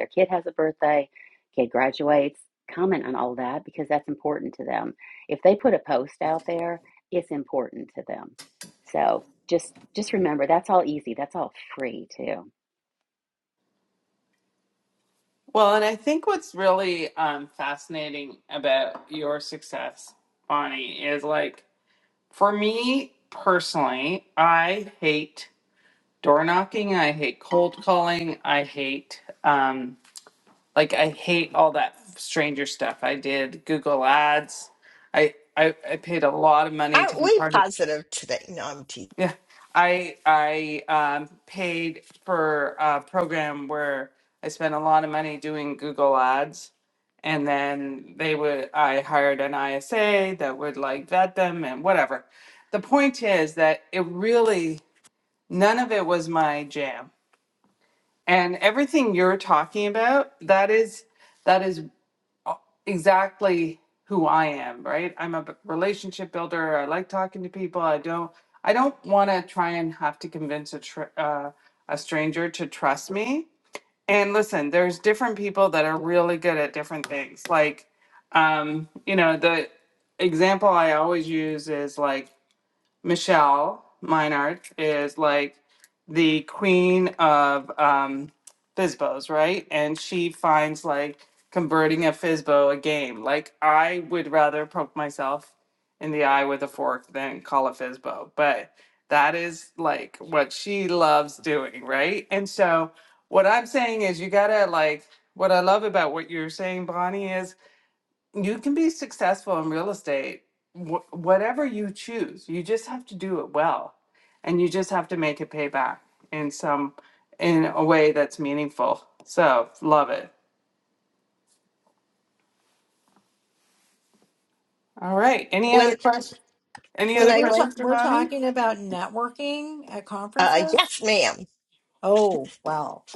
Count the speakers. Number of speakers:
4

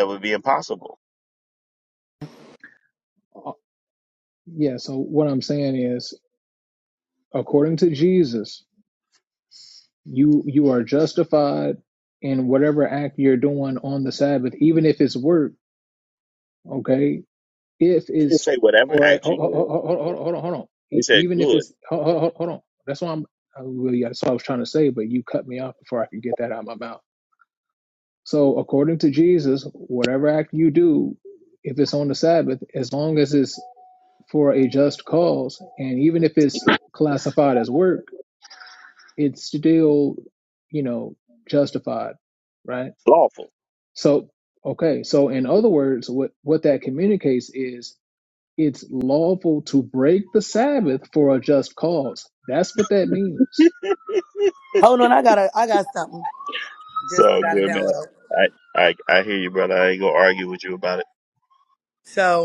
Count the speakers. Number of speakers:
3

